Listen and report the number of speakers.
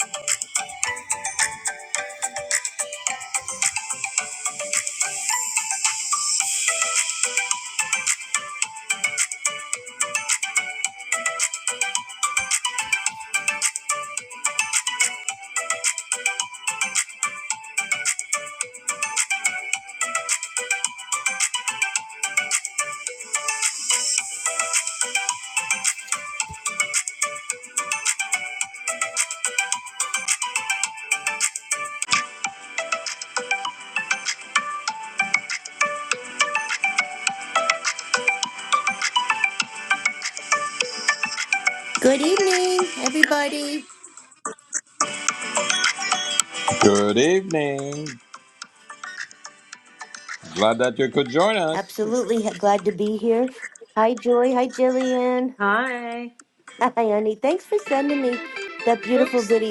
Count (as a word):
three